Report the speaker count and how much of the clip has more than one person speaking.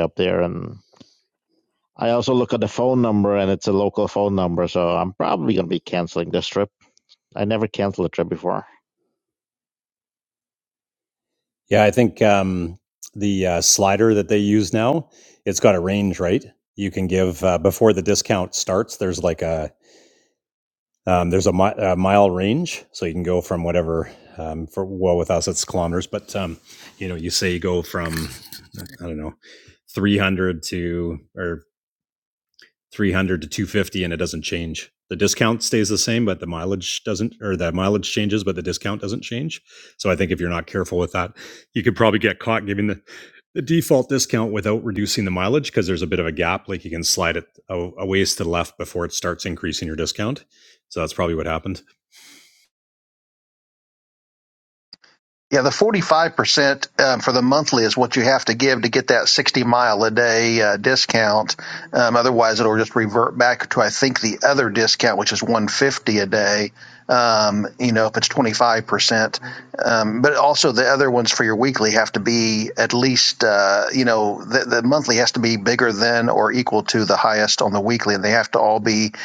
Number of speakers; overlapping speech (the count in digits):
3, no overlap